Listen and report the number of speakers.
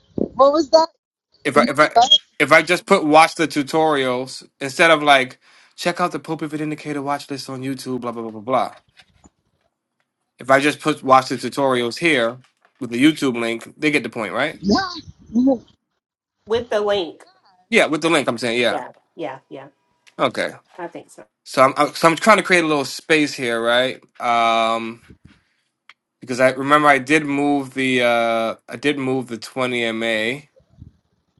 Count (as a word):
three